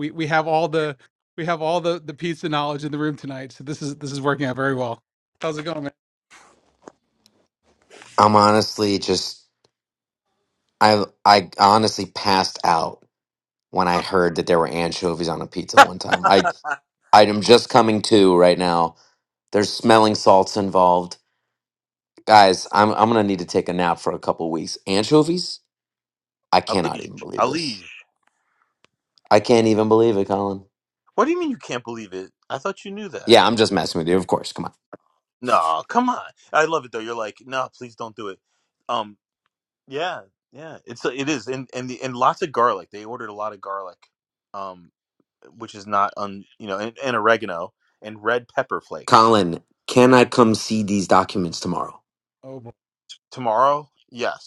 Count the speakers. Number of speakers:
three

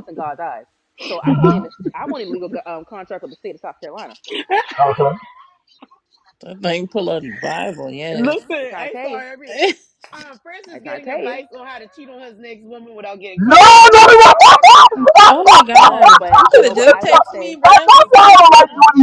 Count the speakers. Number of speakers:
four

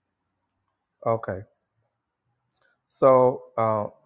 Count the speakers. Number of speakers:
one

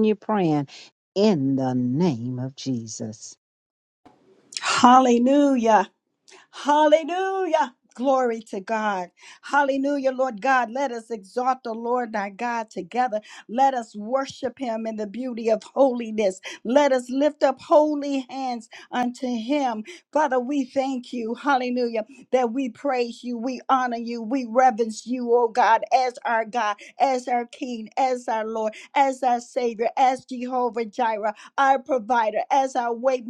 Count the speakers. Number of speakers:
two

